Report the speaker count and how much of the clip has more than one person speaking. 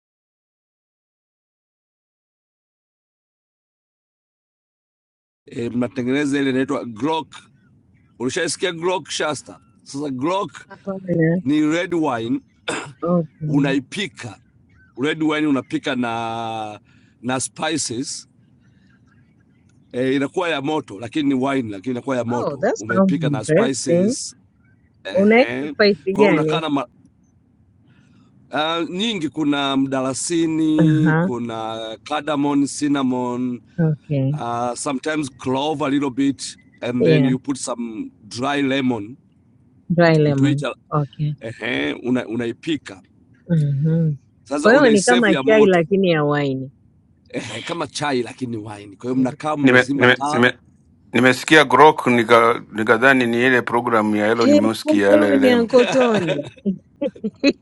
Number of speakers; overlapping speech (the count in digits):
3, about 13%